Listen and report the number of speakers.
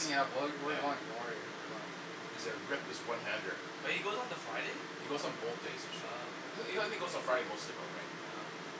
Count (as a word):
three